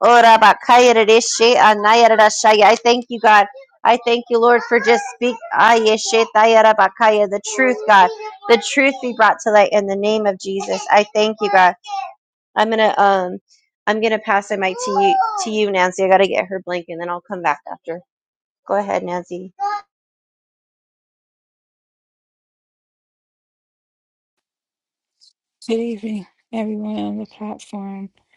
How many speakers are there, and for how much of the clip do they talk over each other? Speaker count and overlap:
two, no overlap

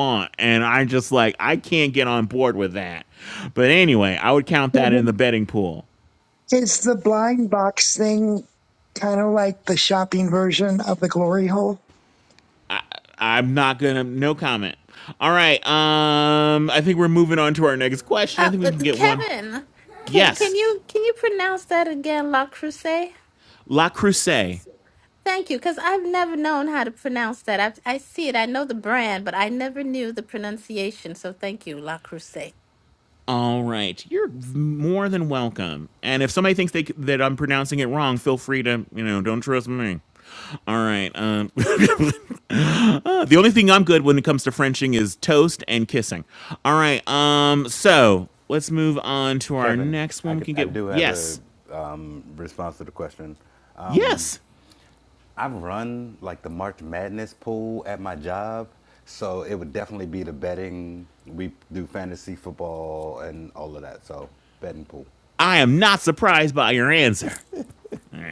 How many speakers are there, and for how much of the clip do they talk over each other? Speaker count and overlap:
four, about 5%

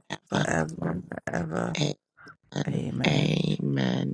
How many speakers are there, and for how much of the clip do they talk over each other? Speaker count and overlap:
two, about 18%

